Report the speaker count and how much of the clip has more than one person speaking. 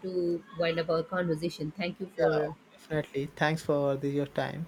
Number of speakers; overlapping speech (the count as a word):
two, about 7%